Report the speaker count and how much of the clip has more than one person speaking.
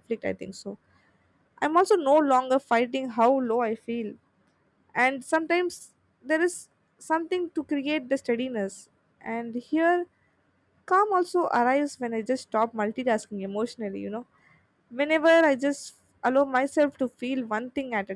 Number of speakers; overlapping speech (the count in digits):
1, no overlap